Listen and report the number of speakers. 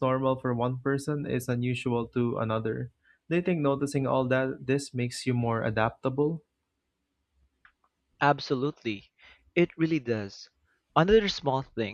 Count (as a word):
two